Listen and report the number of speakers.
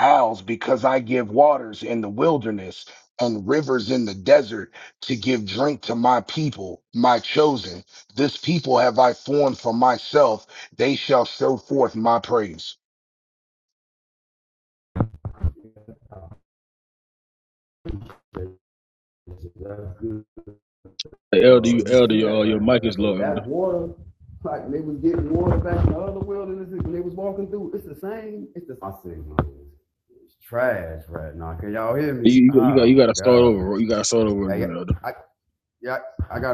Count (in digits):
3